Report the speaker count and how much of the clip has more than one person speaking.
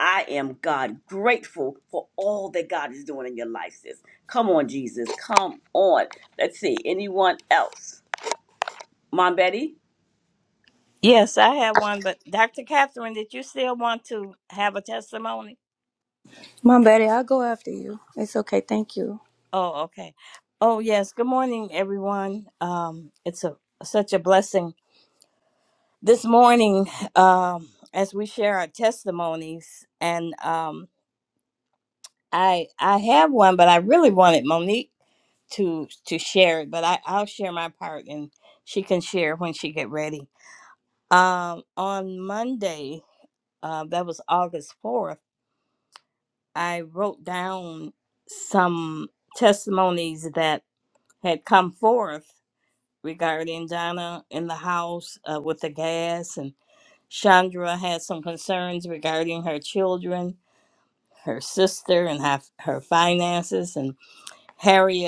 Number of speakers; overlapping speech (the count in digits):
3, no overlap